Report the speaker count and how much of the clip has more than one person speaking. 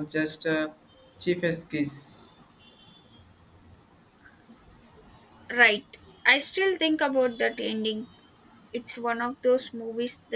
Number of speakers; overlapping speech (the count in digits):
2, no overlap